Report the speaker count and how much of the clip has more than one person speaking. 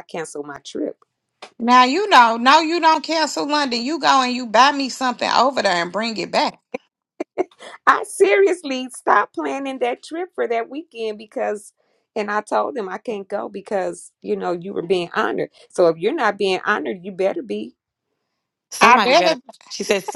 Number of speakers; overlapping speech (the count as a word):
three, about 3%